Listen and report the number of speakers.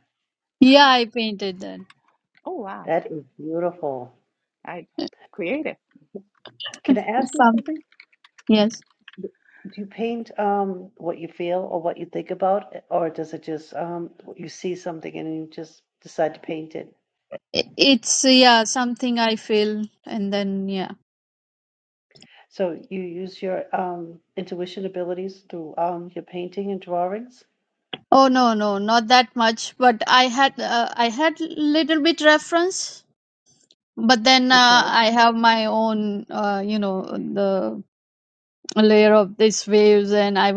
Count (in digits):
3